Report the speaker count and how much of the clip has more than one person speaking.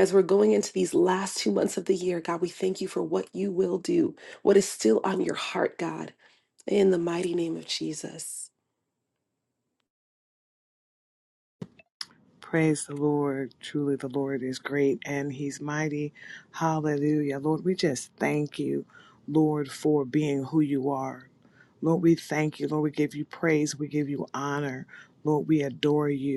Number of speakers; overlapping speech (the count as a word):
two, no overlap